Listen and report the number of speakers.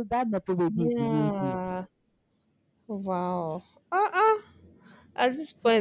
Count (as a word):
two